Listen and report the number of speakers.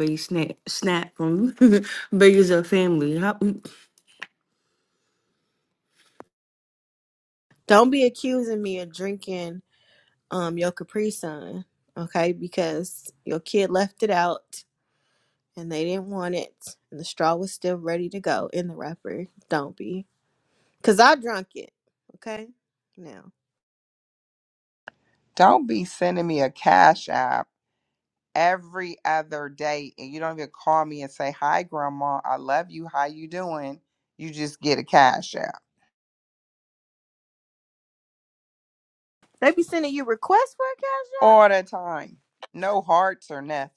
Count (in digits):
3